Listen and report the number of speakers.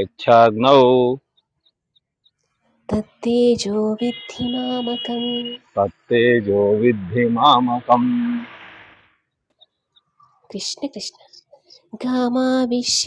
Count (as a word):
two